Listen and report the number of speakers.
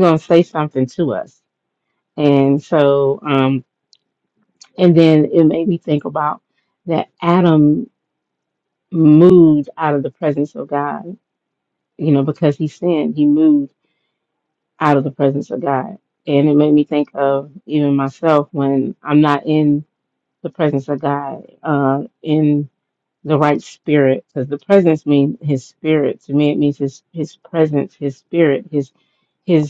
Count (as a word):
one